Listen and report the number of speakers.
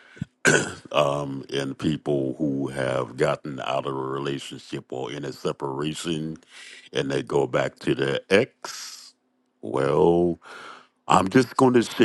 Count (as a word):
one